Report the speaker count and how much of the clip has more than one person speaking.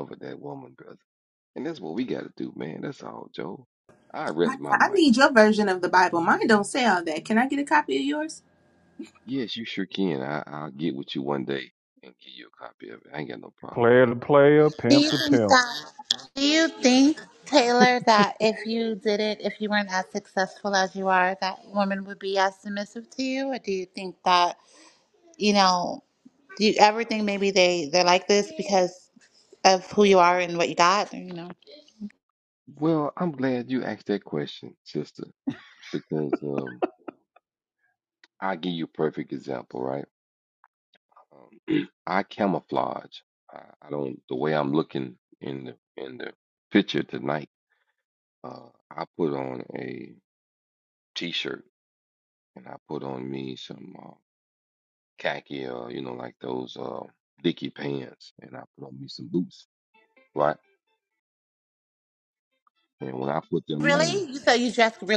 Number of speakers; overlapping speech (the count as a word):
four, about 4%